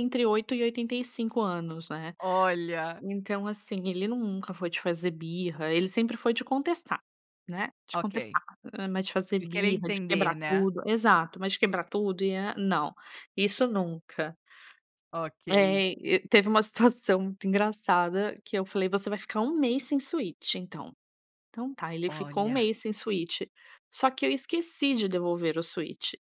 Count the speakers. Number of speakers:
2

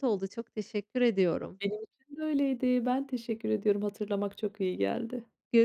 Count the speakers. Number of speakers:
2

